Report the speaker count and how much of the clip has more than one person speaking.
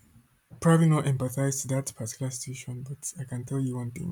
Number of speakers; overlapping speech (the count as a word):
one, no overlap